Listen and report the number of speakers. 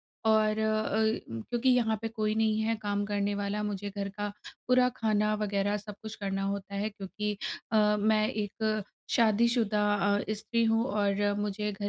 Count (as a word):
one